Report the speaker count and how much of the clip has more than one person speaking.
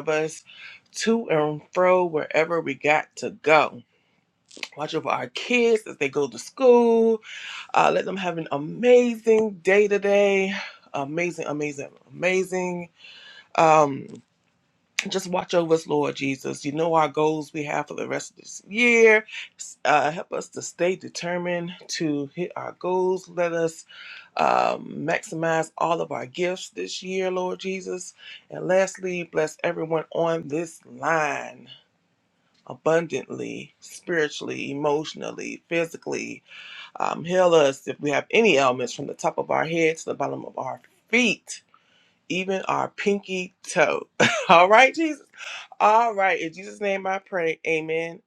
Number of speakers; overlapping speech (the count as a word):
one, no overlap